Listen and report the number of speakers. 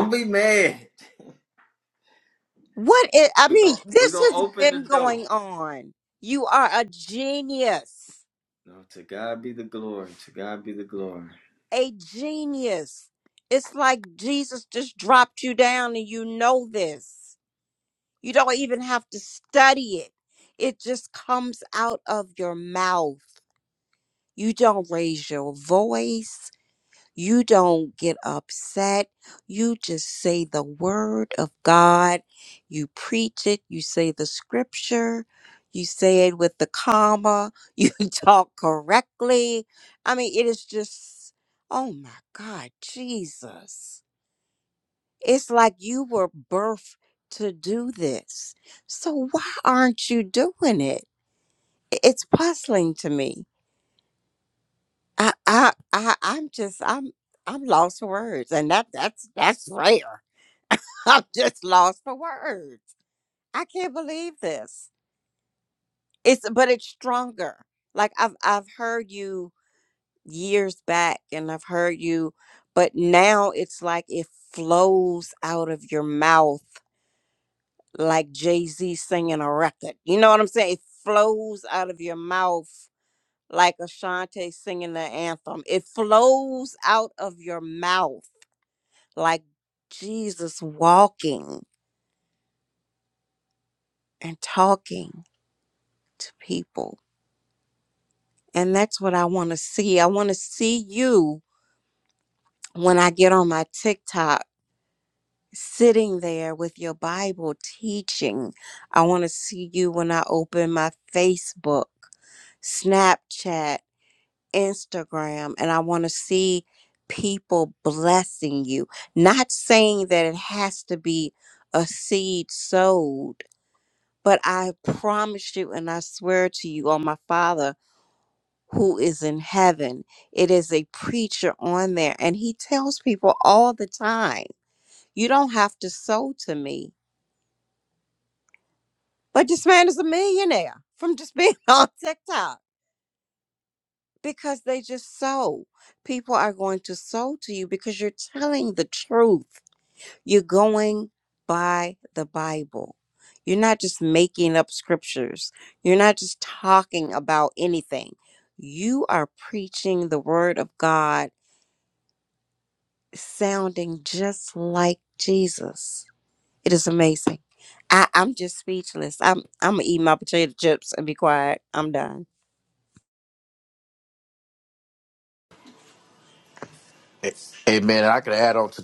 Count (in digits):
3